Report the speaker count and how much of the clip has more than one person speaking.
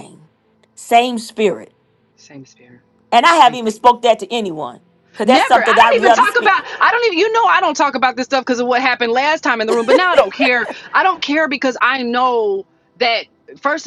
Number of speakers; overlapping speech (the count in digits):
2, about 10%